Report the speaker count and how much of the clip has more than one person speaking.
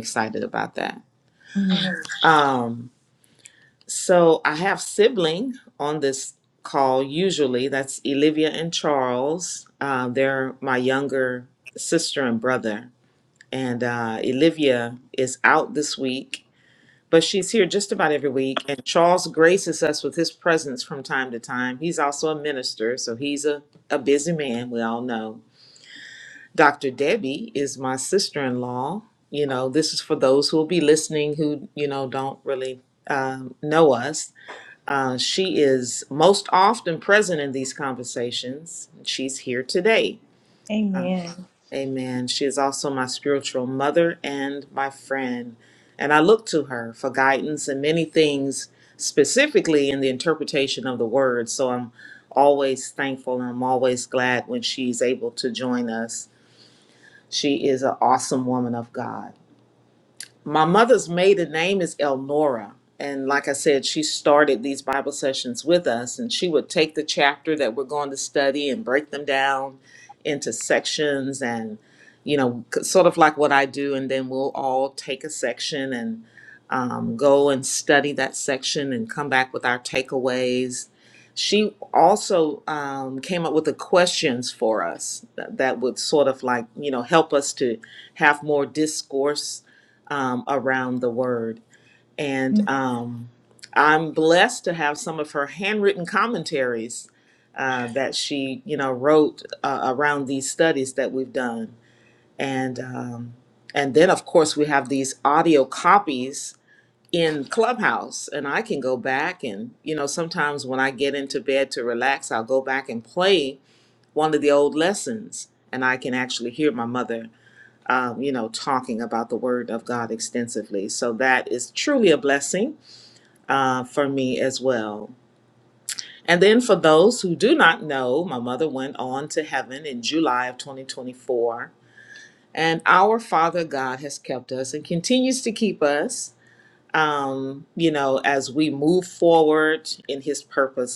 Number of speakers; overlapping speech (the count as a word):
two, under 1%